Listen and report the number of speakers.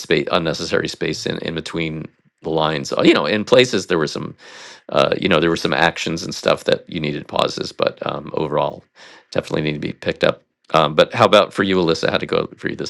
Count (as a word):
one